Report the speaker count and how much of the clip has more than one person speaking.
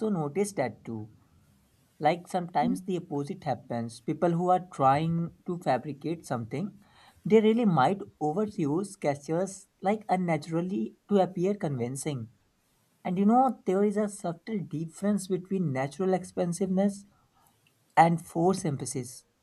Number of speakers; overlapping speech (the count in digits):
1, no overlap